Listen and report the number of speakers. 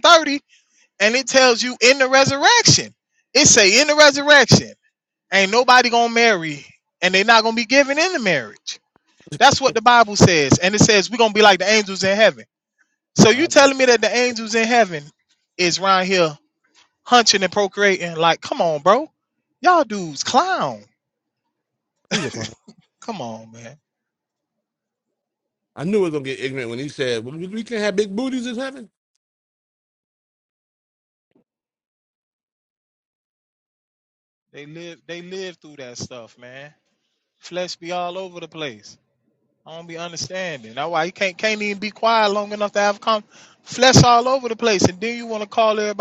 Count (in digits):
2